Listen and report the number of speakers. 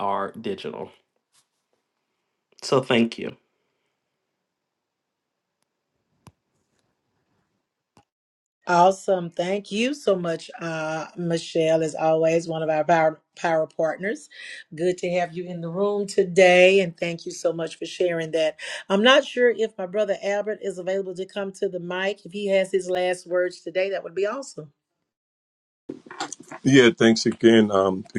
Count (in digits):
3